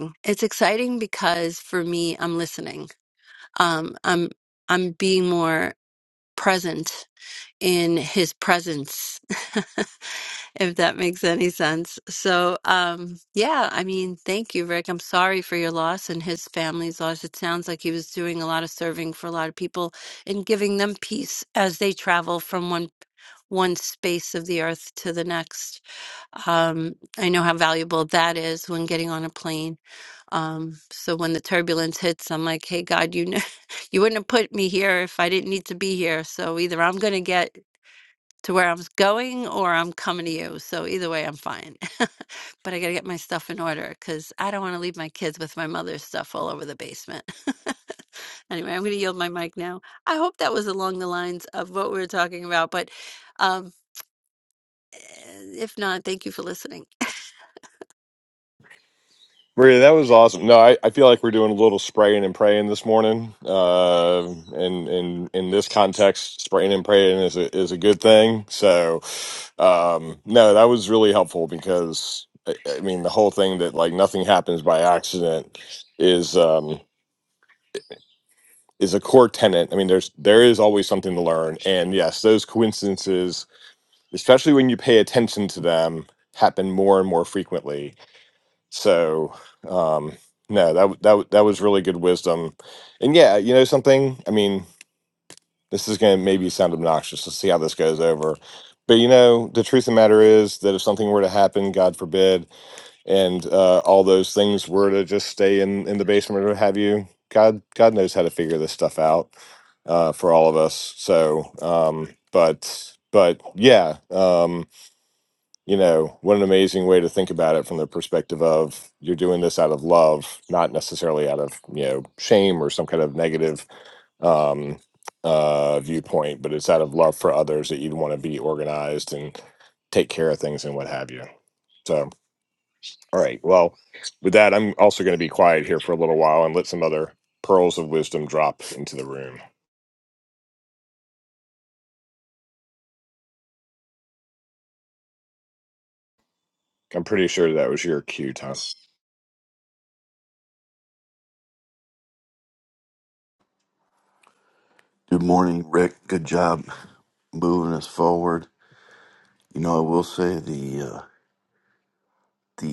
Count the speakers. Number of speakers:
3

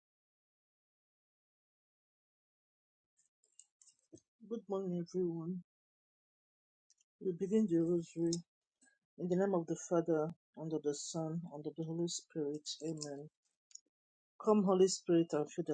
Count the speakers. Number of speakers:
1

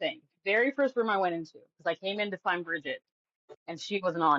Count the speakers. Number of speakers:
1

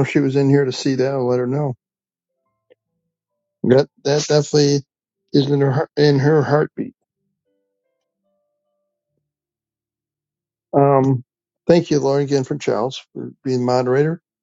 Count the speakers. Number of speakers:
1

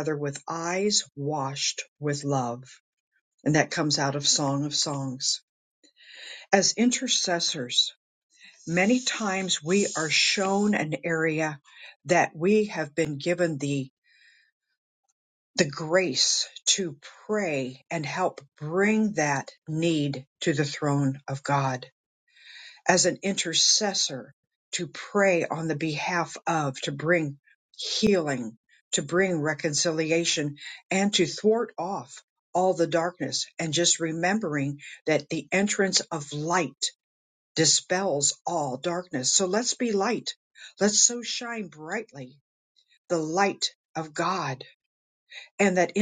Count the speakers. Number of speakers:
1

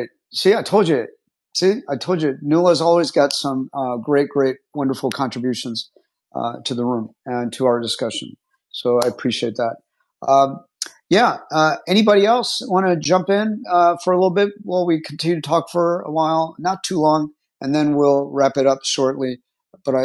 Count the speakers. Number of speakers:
1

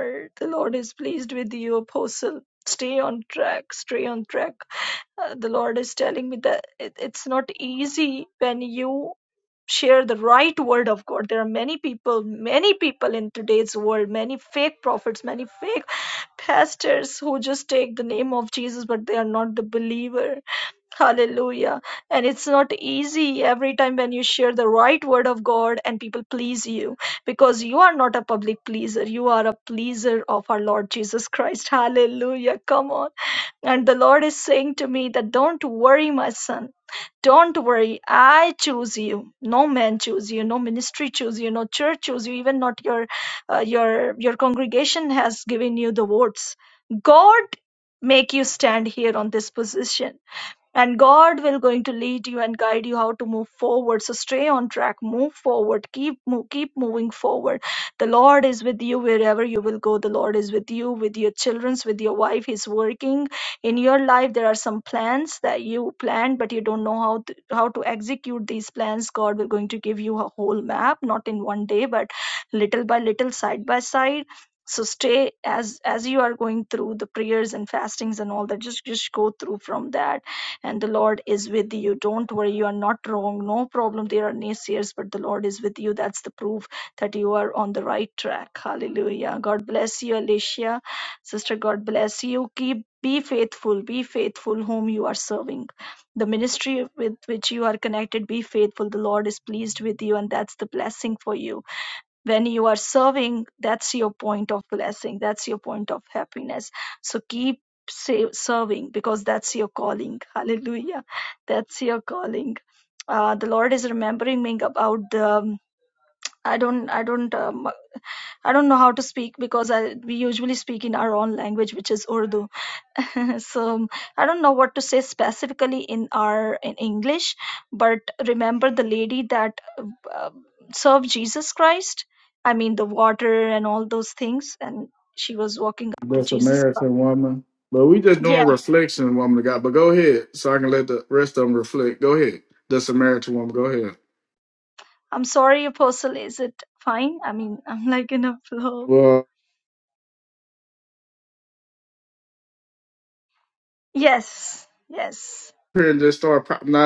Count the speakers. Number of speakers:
2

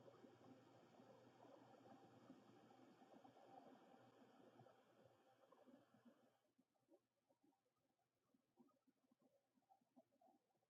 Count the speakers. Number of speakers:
0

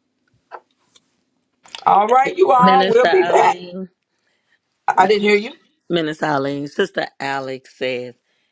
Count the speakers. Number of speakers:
2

